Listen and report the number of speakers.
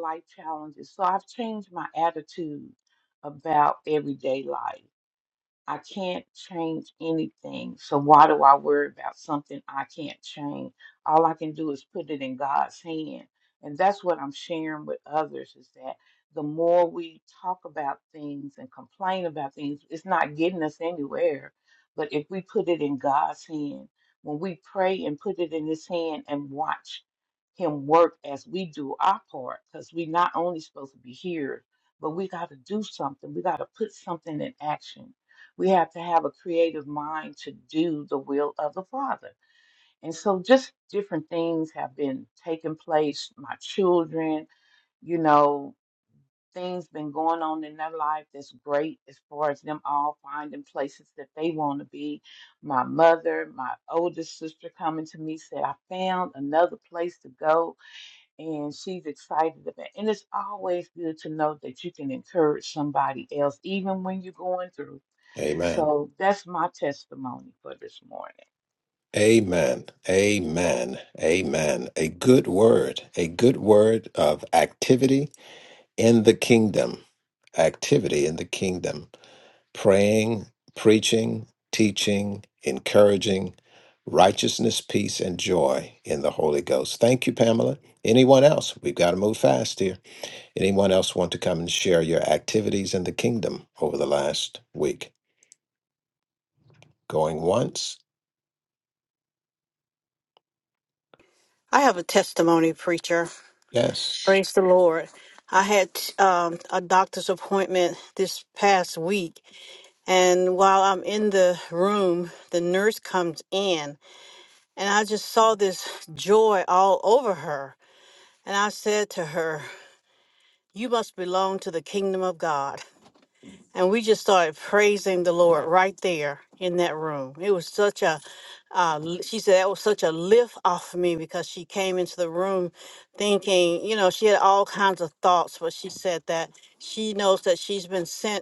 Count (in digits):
3